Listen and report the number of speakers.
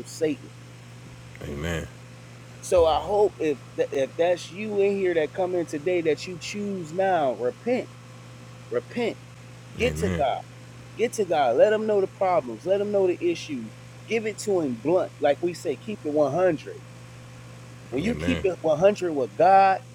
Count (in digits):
2